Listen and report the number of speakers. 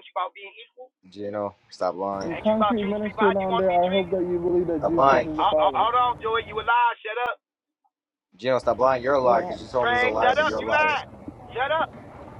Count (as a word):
three